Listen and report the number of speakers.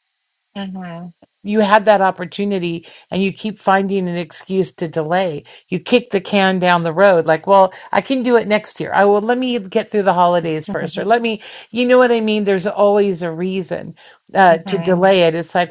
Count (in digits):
2